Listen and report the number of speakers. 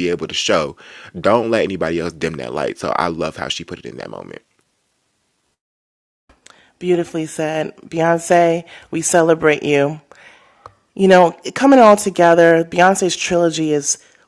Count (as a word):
two